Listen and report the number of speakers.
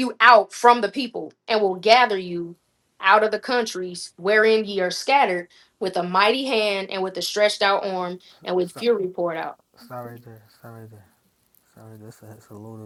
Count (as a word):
two